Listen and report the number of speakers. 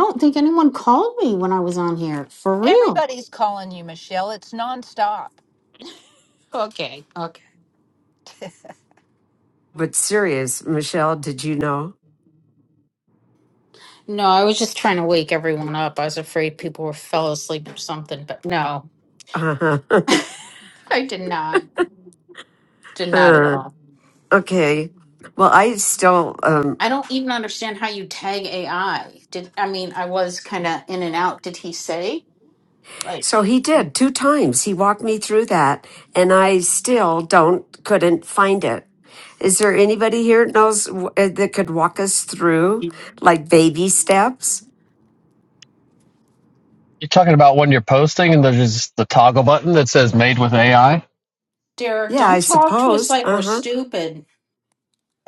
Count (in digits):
4